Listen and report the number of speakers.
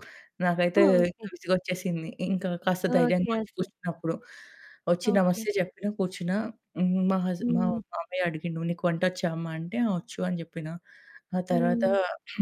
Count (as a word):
two